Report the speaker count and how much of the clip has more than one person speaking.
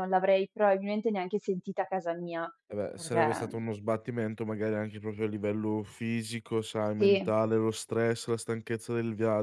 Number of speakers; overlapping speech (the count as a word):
two, about 9%